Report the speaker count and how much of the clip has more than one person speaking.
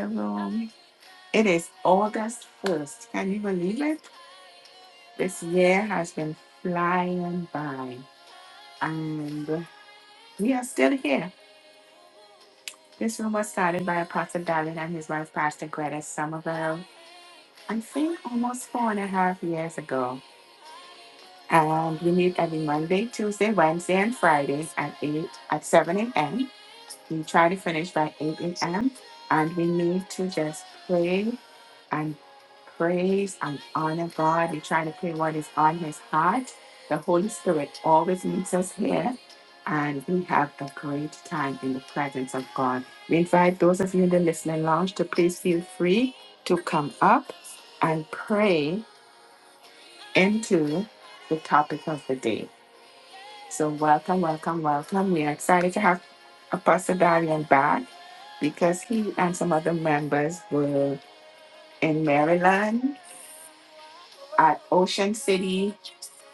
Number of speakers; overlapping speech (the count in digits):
1, no overlap